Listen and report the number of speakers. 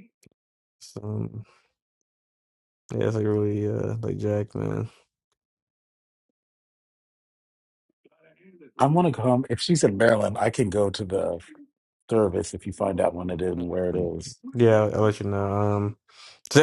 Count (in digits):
2